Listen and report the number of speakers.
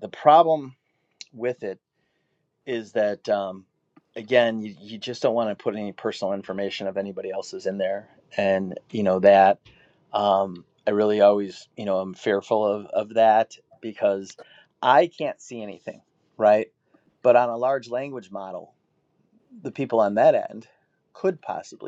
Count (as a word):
one